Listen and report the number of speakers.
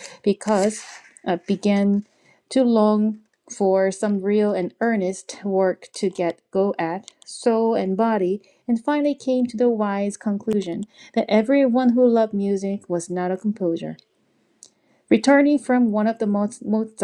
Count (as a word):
one